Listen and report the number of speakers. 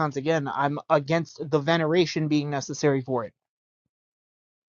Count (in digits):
1